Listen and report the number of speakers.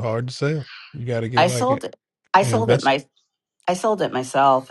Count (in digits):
2